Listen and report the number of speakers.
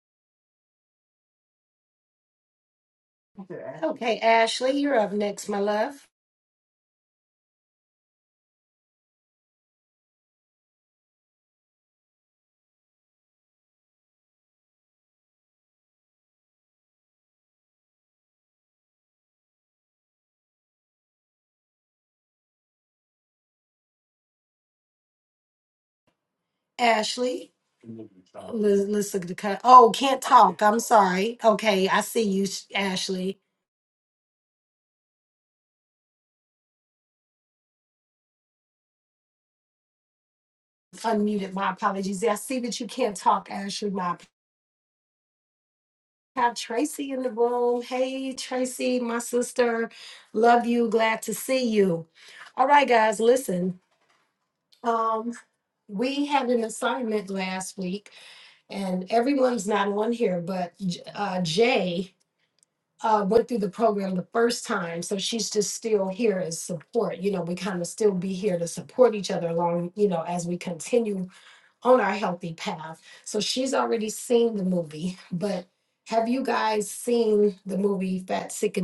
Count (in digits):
1